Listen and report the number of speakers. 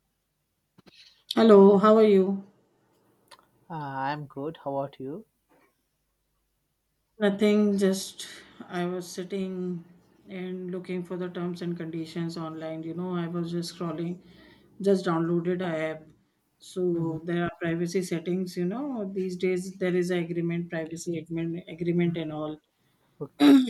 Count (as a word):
two